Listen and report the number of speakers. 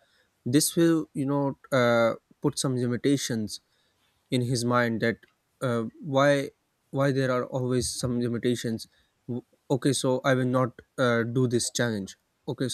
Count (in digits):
1